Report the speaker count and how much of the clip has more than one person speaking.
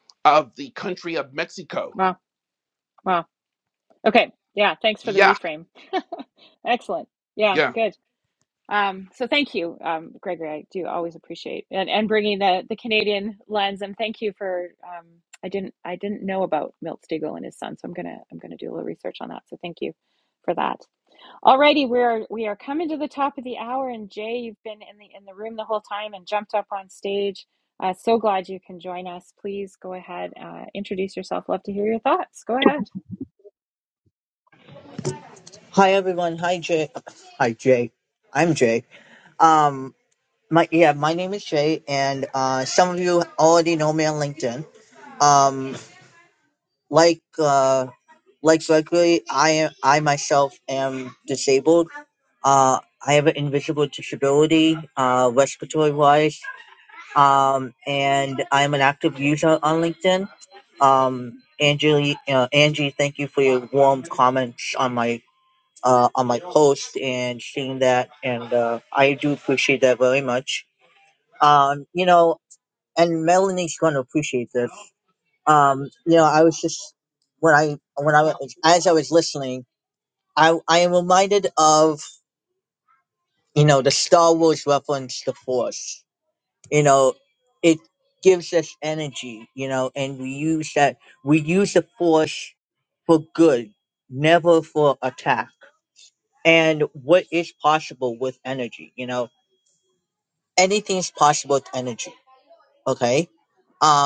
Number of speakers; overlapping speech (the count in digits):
3, under 1%